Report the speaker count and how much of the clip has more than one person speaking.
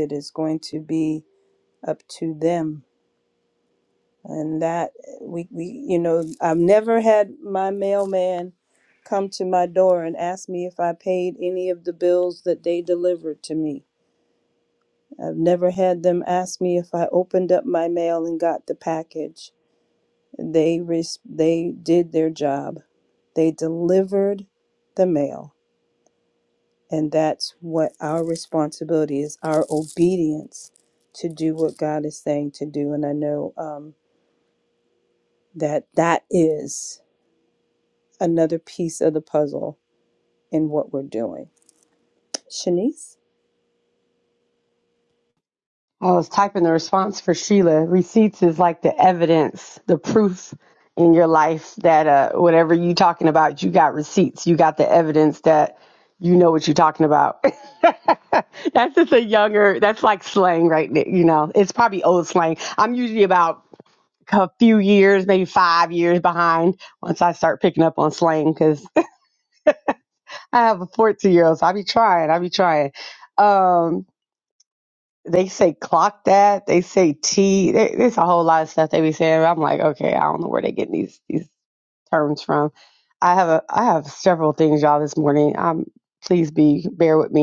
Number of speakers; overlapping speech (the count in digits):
2, no overlap